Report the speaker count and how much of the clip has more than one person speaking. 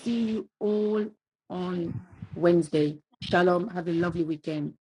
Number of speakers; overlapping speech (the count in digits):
1, no overlap